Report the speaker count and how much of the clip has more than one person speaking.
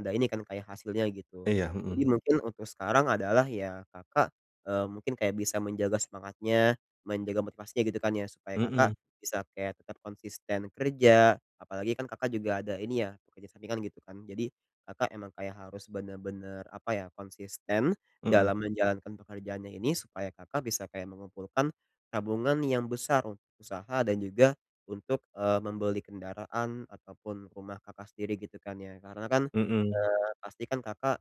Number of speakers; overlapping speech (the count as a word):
two, about 2%